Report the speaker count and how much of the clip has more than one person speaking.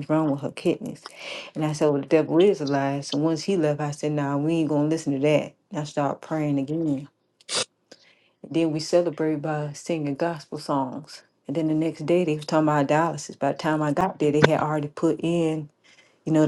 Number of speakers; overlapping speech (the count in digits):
1, no overlap